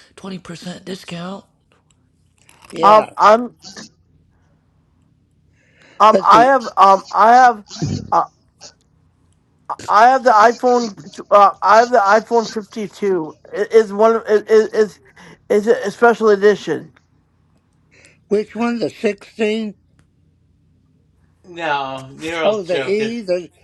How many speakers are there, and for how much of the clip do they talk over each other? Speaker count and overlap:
four, about 6%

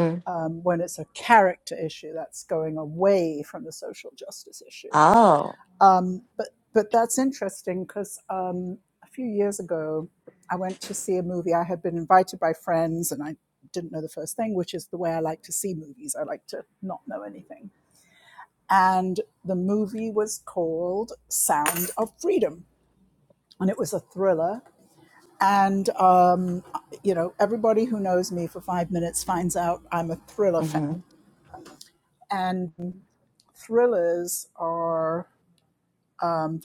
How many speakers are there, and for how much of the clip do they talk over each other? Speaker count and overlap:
two, about 1%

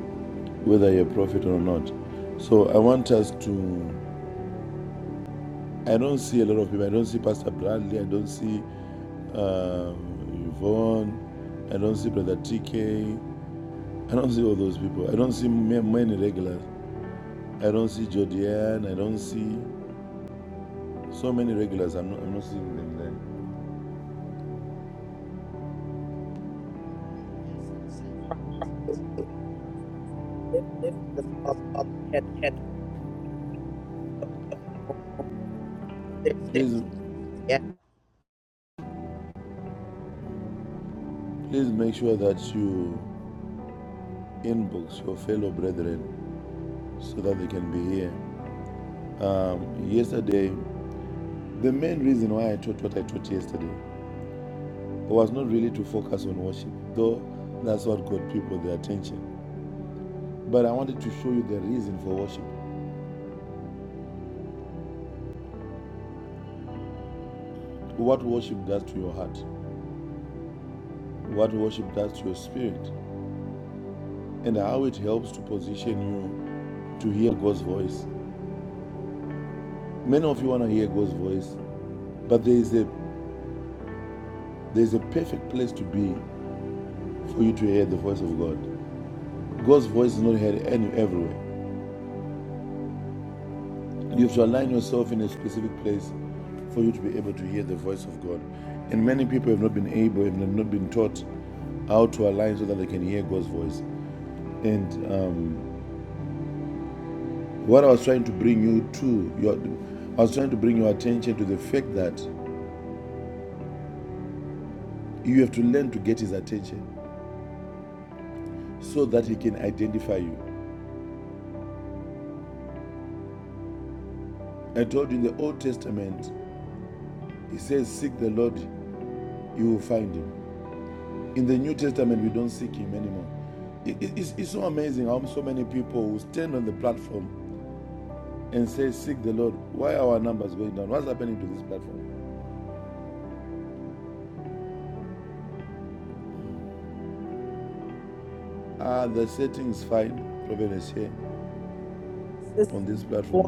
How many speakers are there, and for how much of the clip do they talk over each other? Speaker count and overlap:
two, under 1%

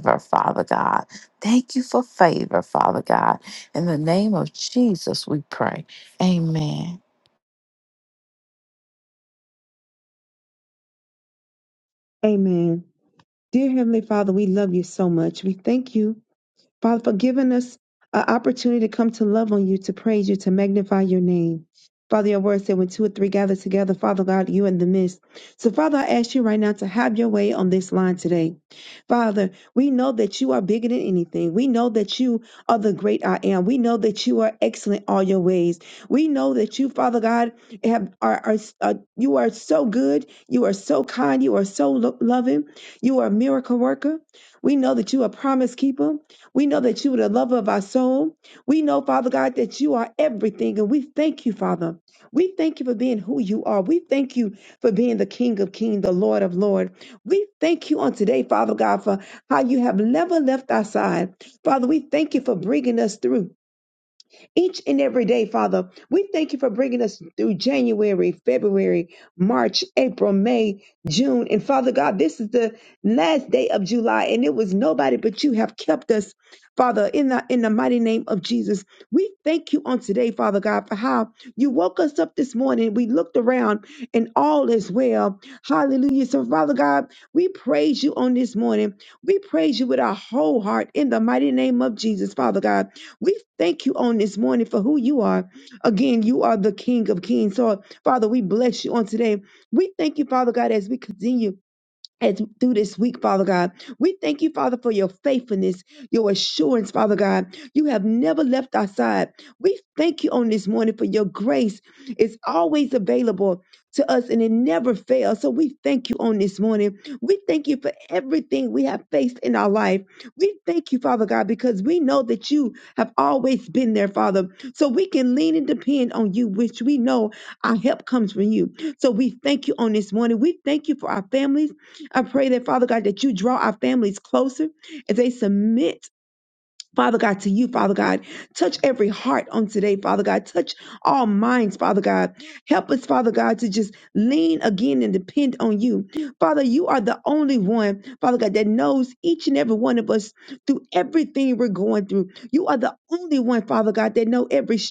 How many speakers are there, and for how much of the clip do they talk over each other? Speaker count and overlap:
two, no overlap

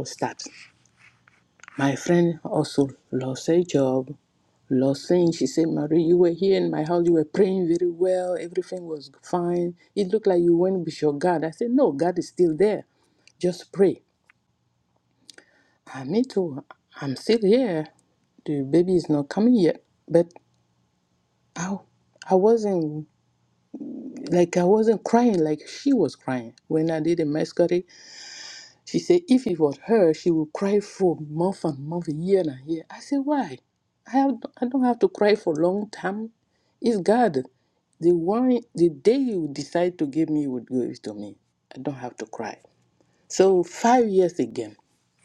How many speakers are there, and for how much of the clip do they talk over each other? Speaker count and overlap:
one, no overlap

